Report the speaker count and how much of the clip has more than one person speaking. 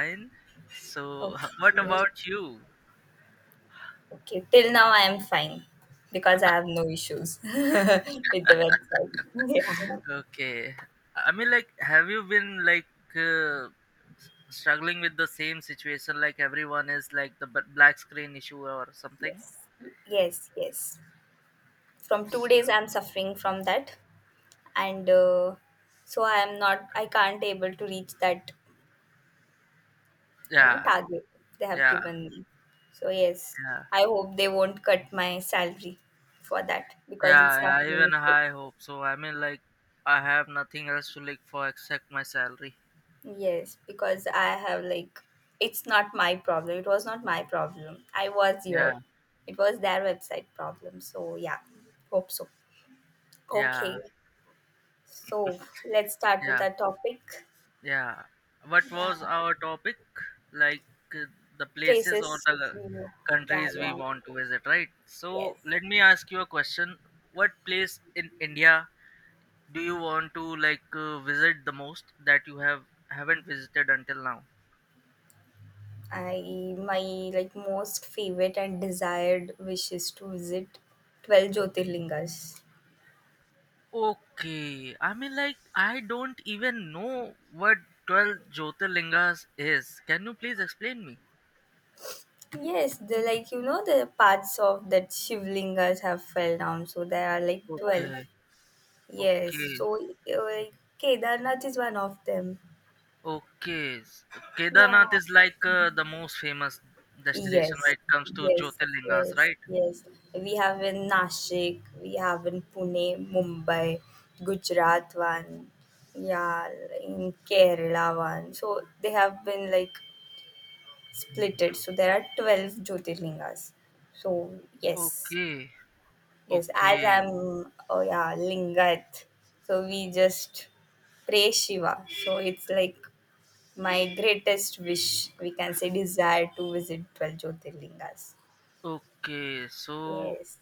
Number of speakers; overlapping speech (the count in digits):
2, about 6%